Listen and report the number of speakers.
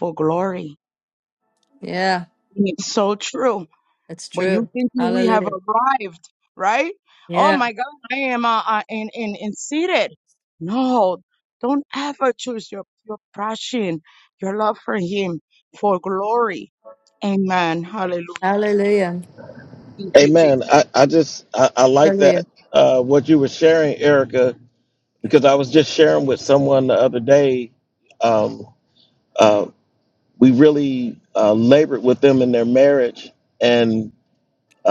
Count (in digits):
3